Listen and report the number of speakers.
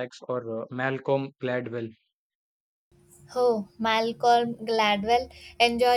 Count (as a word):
two